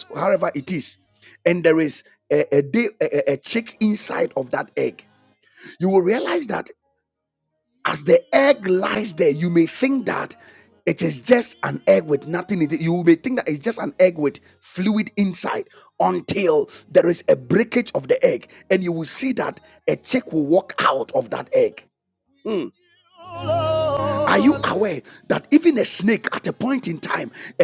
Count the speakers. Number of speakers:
1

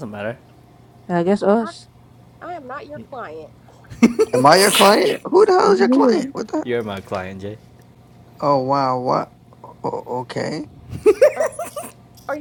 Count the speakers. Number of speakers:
4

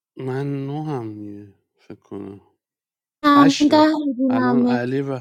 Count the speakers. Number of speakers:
2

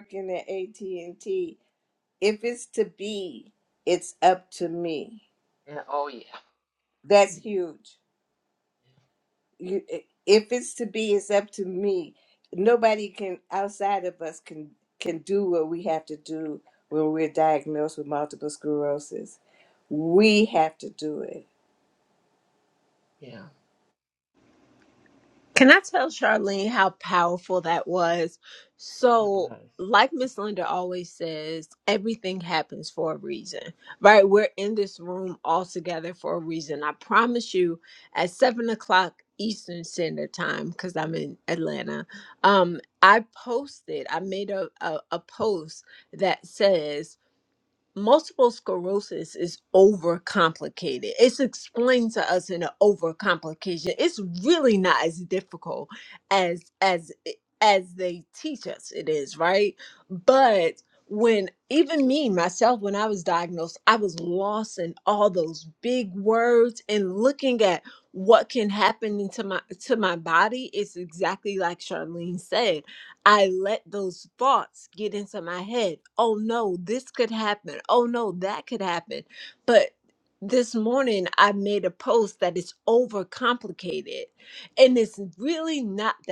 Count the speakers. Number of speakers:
3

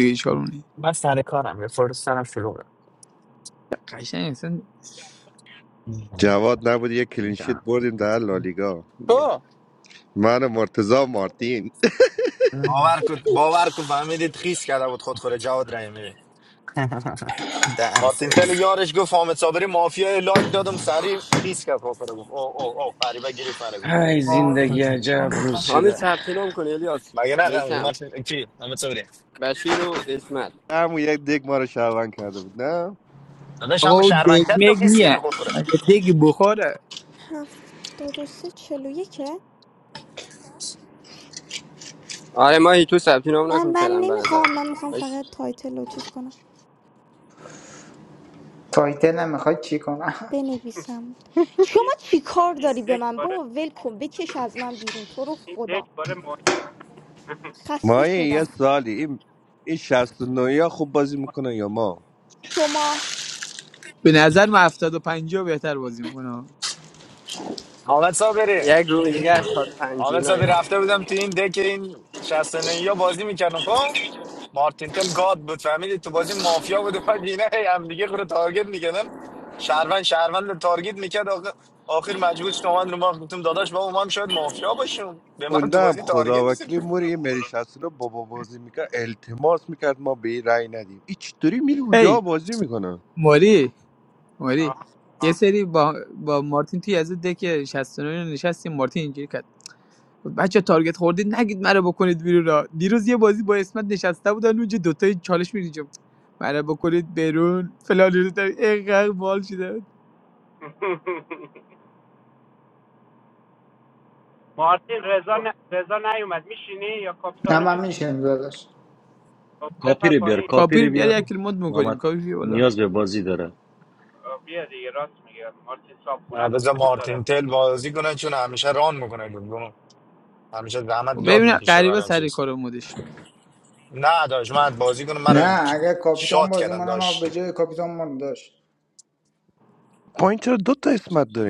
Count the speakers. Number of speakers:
9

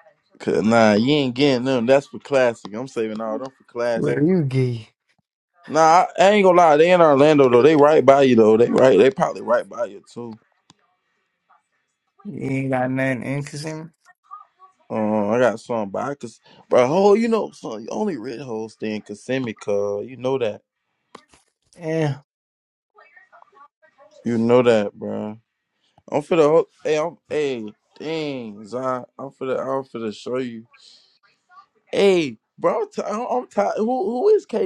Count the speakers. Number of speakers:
2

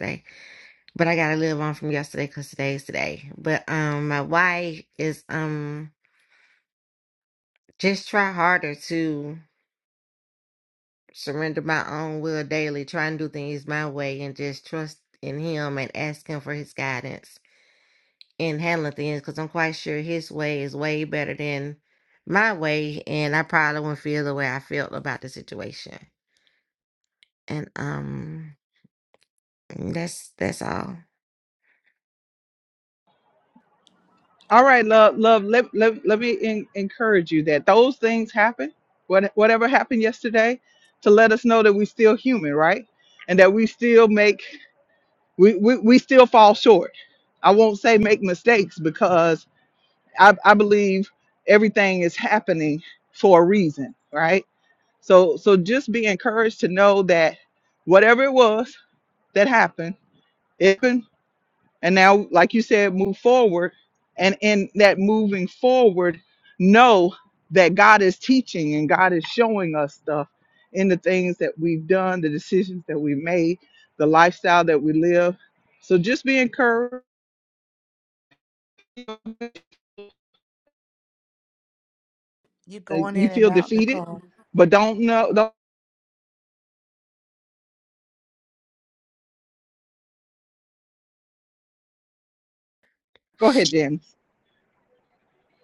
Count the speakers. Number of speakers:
3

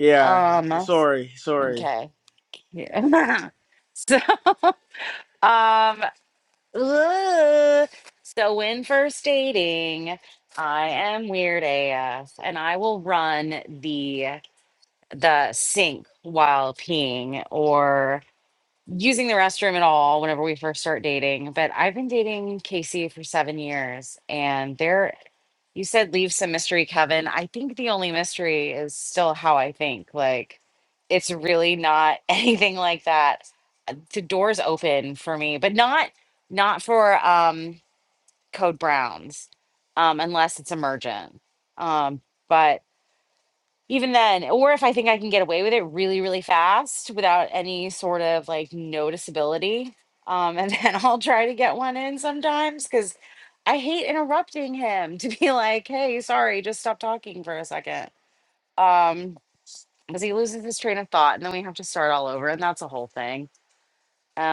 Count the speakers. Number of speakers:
2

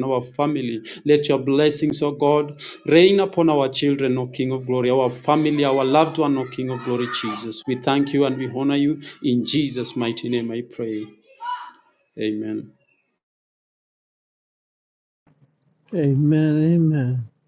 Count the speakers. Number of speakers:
2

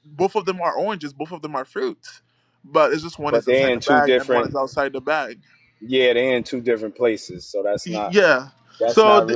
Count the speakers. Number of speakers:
2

